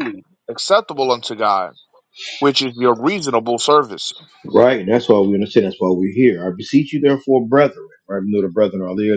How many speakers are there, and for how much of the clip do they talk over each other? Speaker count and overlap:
two, no overlap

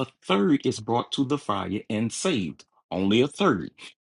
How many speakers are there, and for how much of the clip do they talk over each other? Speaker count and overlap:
one, no overlap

